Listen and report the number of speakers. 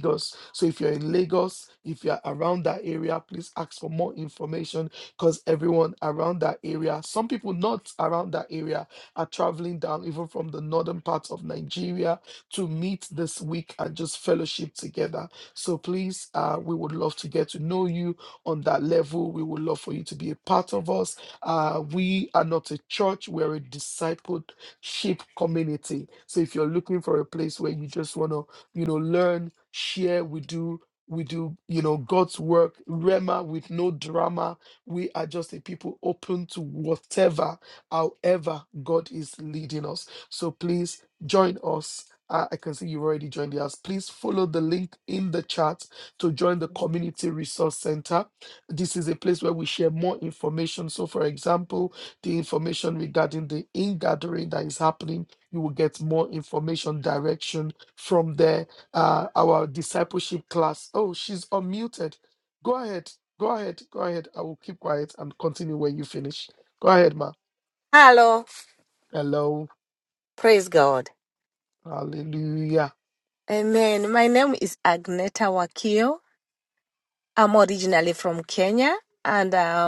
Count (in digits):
2